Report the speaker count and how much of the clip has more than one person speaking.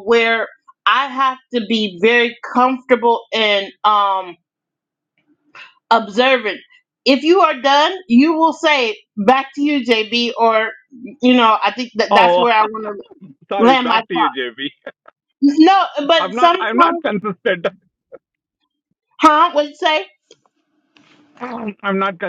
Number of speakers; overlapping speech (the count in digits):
2, about 9%